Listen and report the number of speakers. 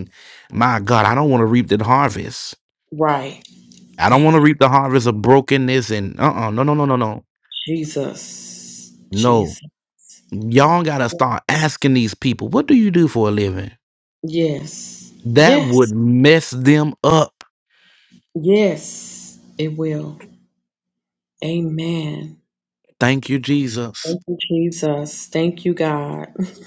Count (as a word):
two